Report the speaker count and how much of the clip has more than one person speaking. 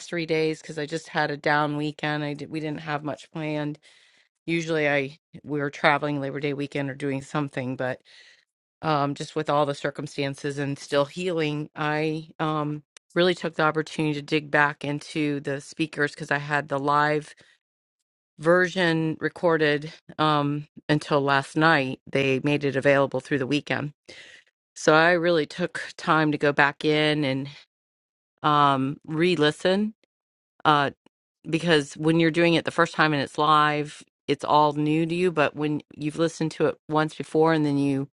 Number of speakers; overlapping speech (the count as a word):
one, no overlap